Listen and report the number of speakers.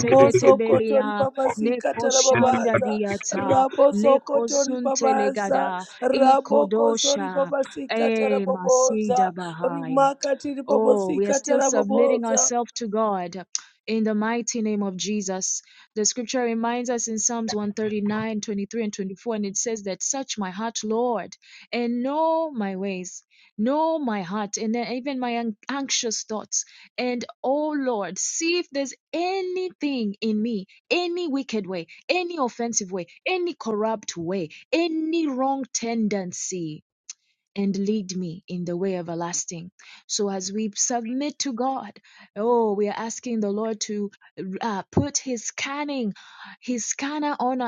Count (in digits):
2